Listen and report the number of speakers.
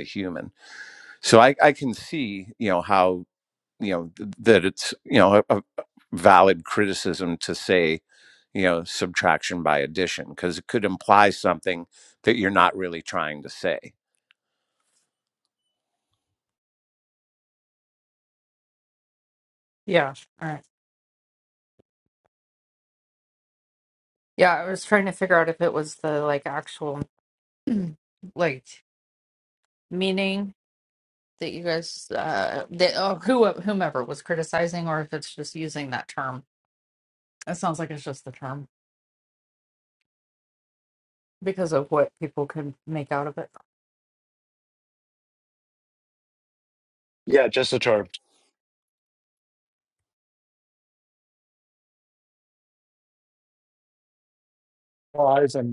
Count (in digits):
3